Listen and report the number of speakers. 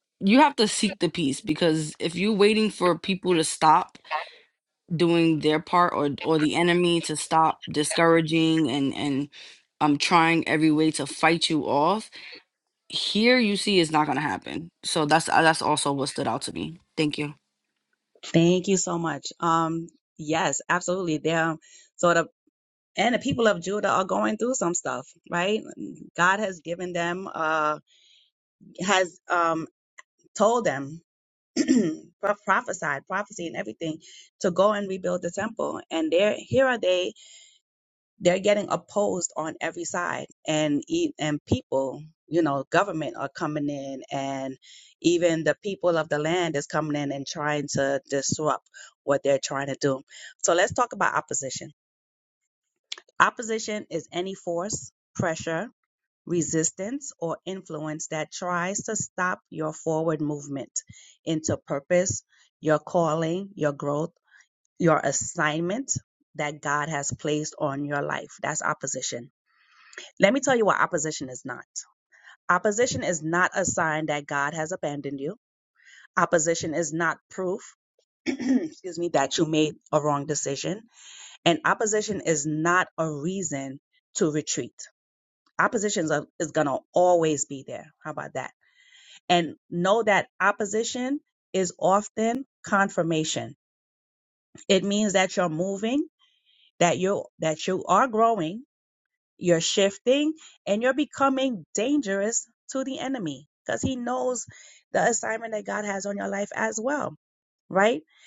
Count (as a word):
two